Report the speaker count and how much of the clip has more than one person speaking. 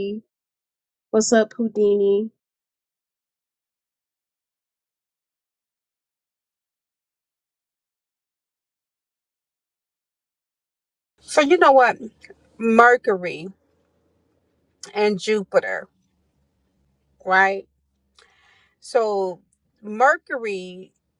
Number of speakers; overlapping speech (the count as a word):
two, no overlap